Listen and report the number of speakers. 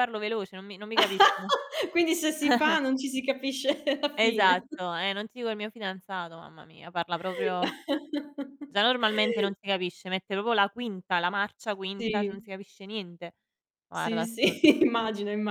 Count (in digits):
2